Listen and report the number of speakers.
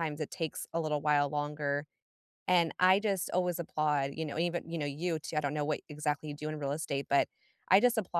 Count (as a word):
one